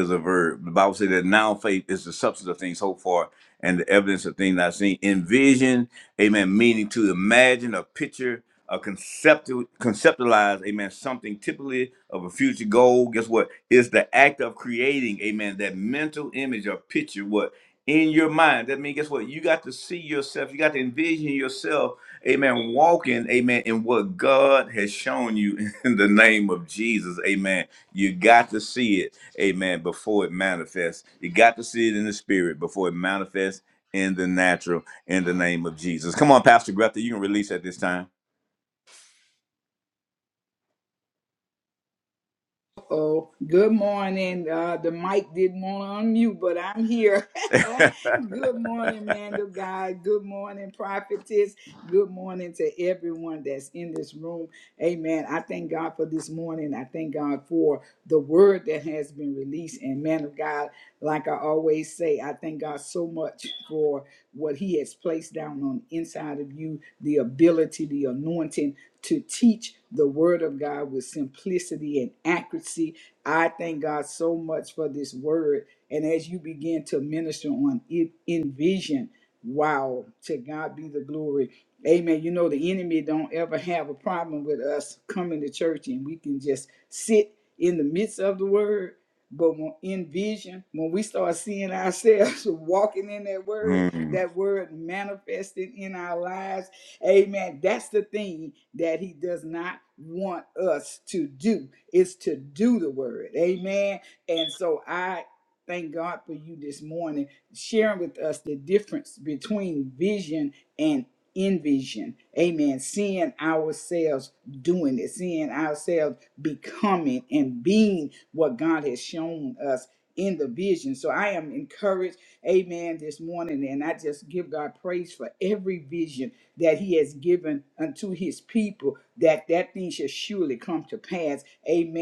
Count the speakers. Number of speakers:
2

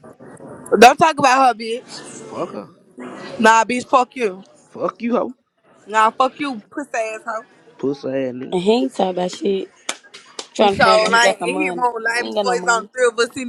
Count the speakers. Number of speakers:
3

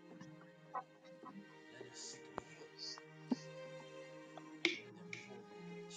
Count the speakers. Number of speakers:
0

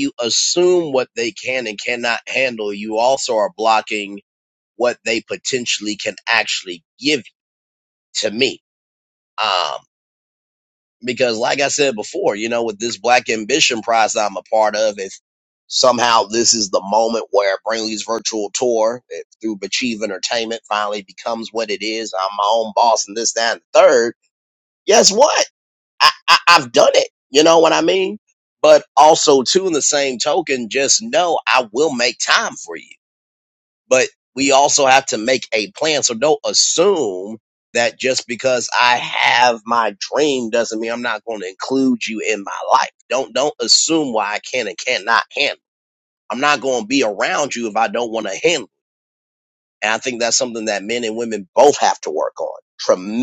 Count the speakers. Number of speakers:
1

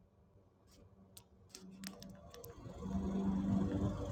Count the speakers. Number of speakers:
0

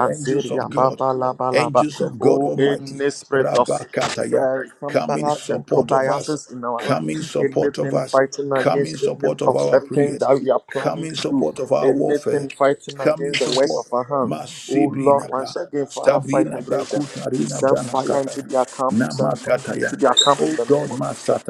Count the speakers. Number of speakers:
2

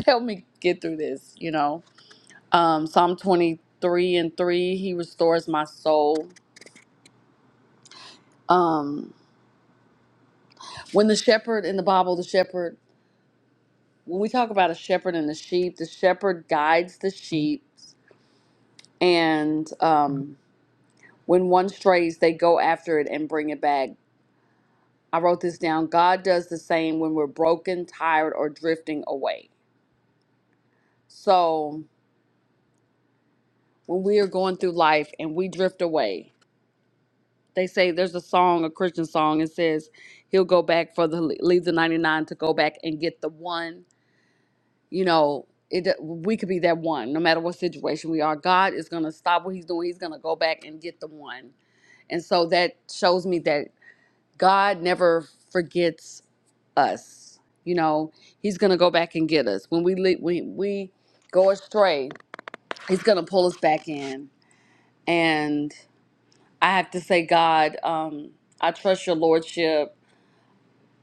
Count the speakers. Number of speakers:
1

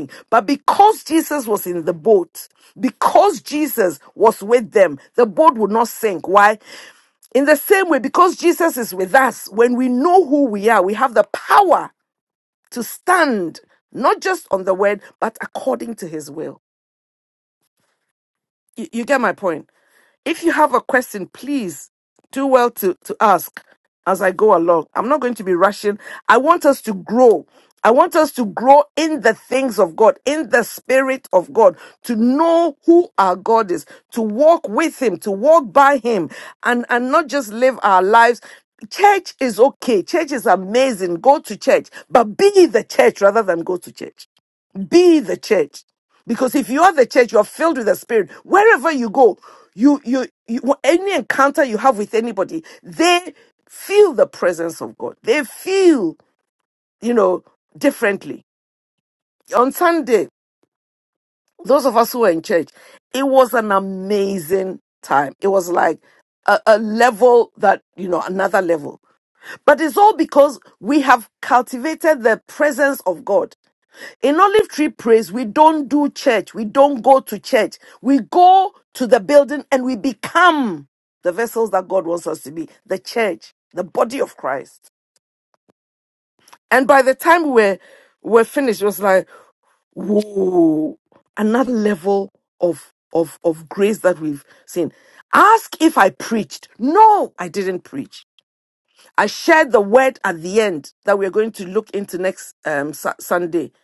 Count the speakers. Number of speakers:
1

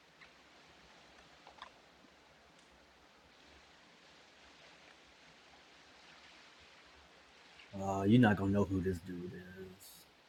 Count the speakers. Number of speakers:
1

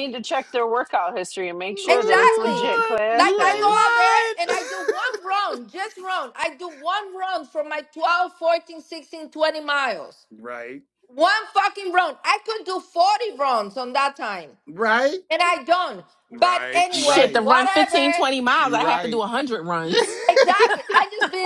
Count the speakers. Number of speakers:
4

